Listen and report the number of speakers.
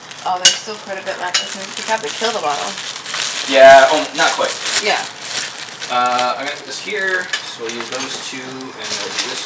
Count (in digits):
2